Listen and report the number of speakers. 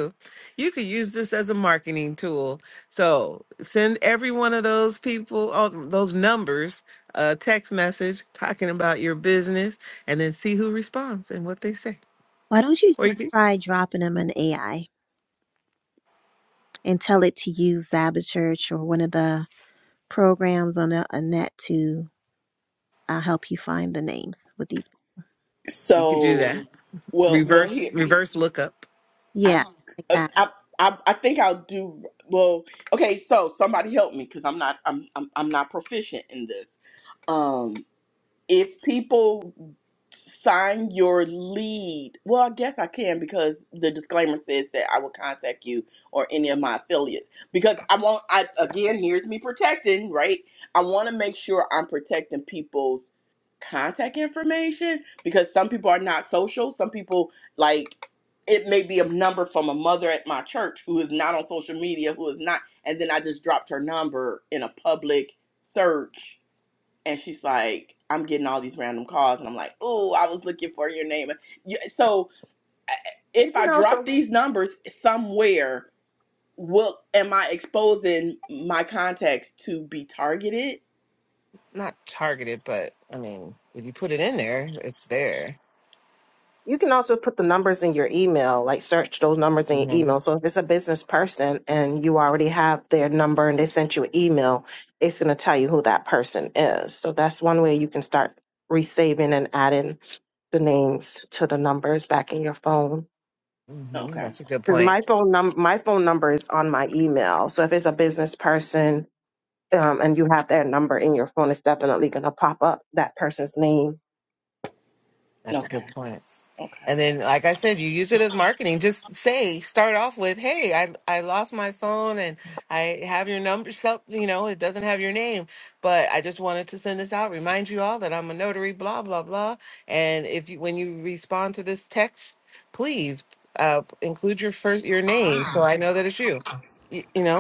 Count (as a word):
four